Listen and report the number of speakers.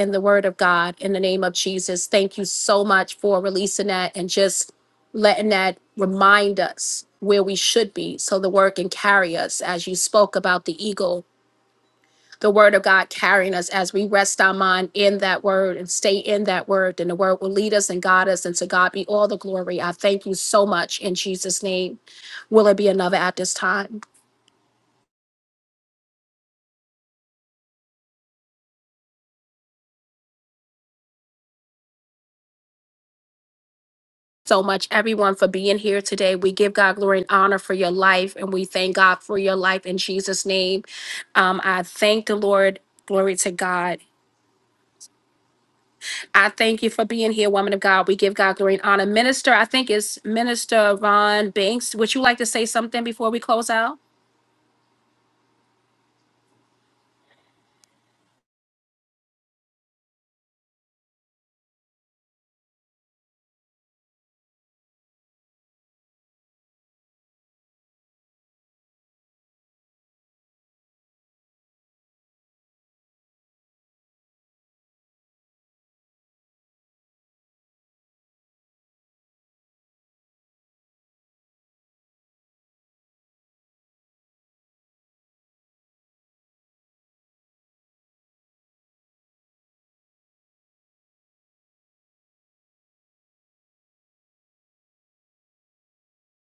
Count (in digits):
1